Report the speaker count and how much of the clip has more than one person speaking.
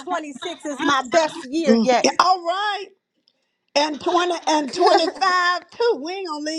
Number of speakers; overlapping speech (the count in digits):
2, about 7%